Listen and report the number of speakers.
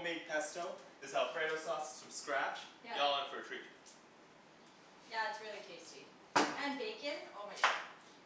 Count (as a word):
two